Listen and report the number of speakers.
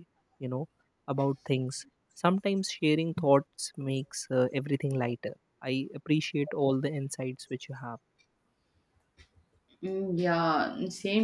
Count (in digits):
2